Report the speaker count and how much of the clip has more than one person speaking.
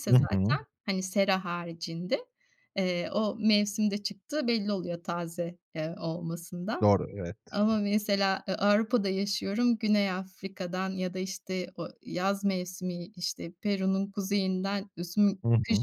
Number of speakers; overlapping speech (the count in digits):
2, about 6%